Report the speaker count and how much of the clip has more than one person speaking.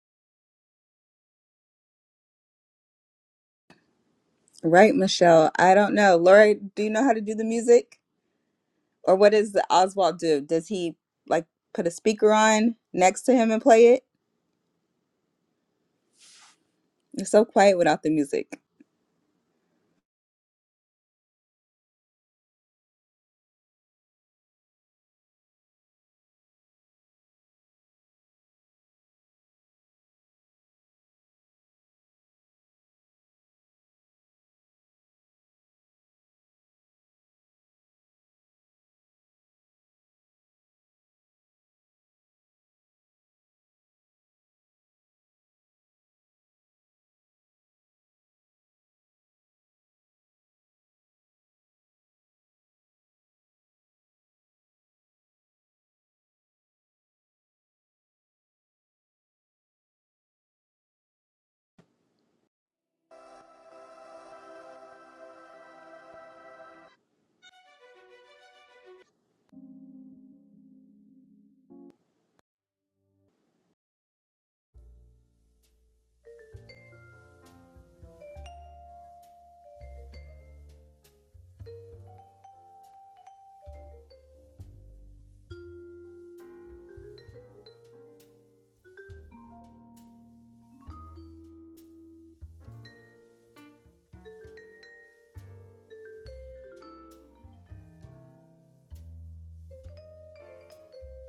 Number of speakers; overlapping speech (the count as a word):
one, no overlap